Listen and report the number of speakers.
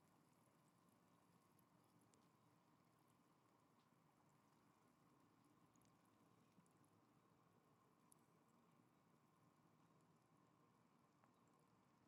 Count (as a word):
zero